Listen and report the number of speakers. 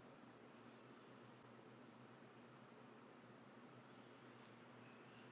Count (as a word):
zero